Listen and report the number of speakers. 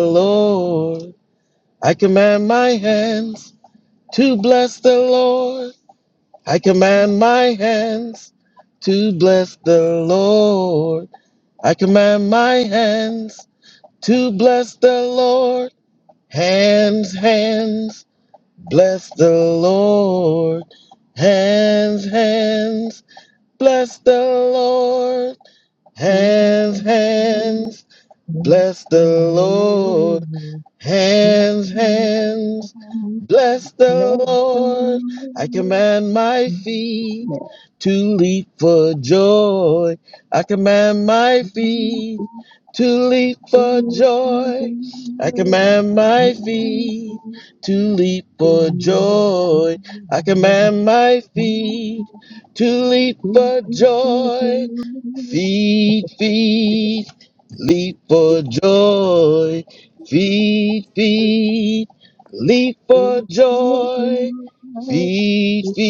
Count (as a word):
two